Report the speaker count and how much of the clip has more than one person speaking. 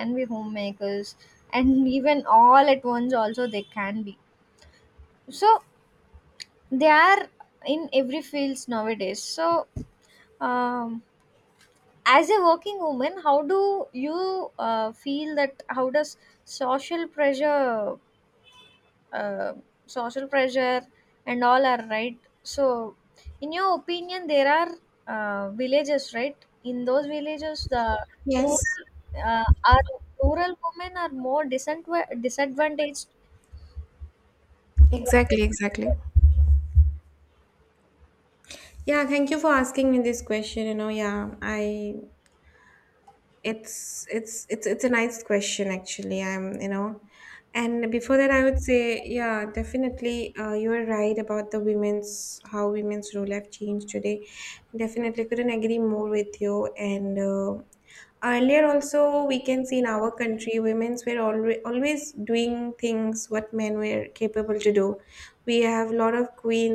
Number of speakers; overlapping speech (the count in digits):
2, about 1%